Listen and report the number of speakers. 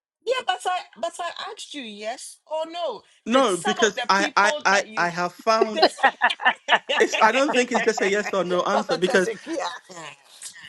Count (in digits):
2